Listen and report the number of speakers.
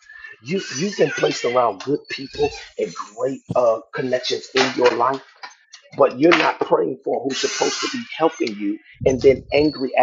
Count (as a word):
one